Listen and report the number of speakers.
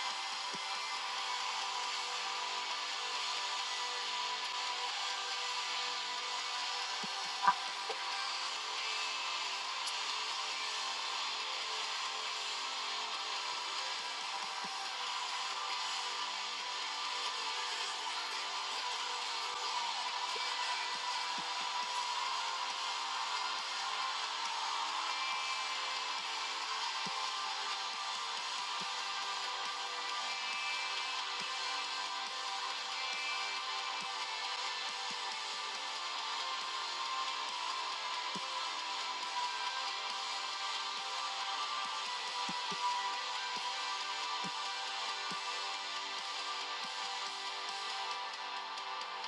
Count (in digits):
0